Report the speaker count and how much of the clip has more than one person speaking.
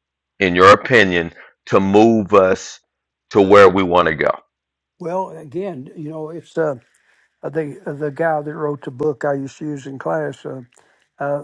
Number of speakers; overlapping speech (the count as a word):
two, no overlap